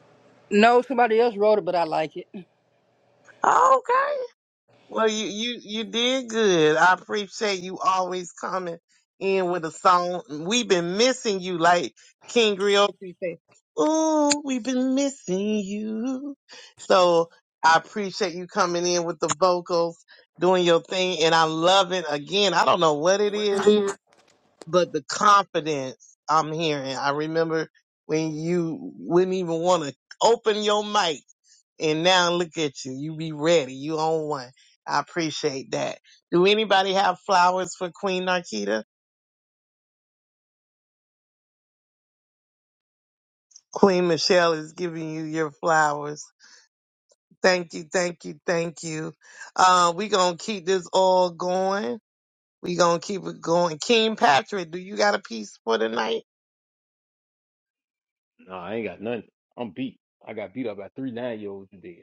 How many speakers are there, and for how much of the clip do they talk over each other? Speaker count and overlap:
3, no overlap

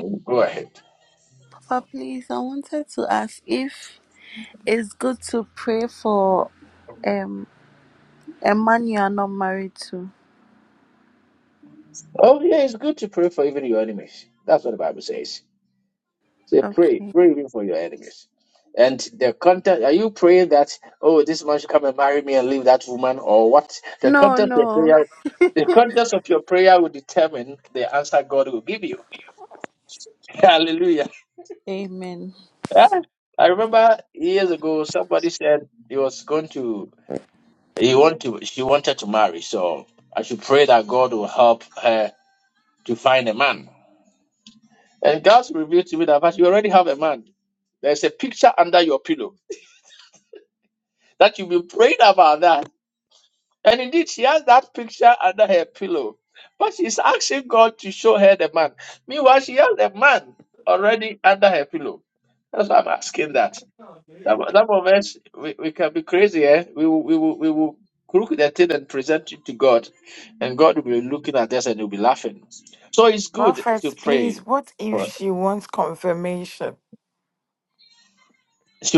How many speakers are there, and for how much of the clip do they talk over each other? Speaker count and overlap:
3, about 3%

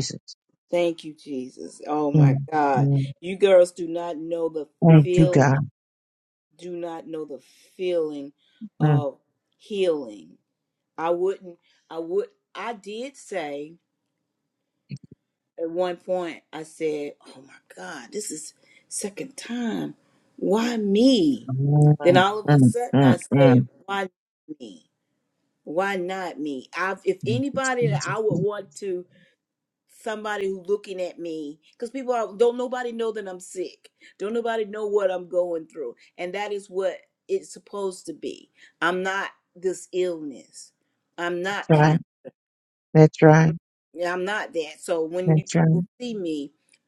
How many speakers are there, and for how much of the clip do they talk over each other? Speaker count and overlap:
2, about 4%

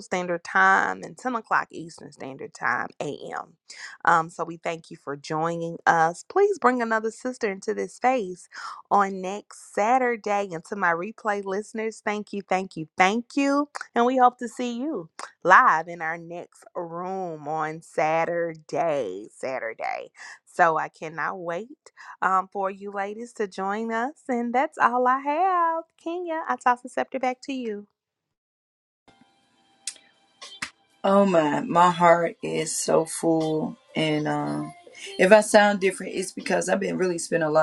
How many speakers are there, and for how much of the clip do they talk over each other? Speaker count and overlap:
2, no overlap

